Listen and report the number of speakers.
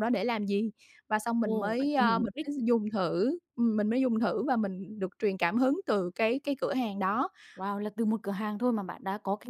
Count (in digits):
2